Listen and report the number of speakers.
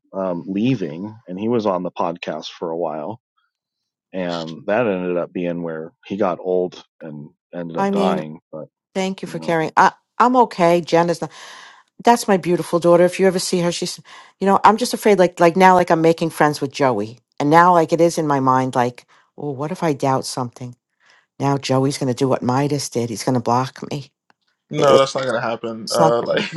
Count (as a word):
three